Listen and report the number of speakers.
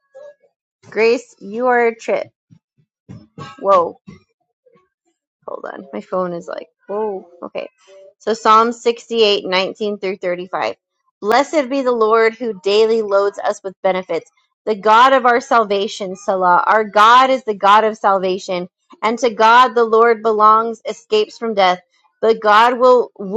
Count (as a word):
one